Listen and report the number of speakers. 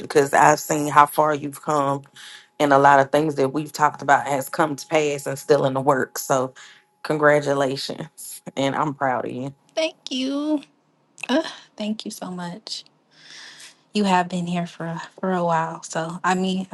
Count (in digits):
2